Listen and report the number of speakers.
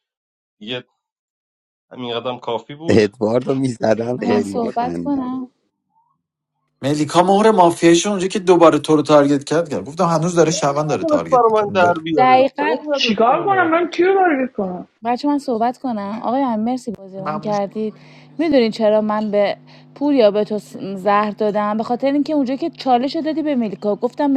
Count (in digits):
5